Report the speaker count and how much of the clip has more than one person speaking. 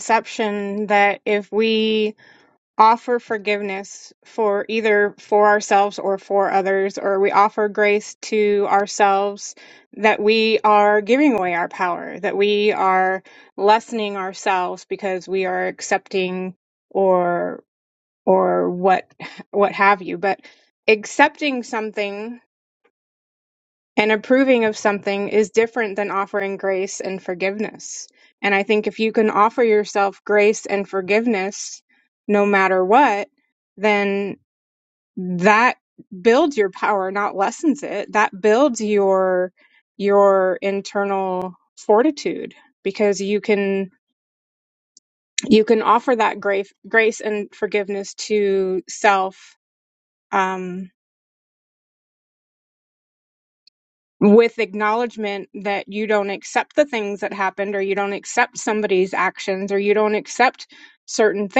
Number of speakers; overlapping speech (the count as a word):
one, no overlap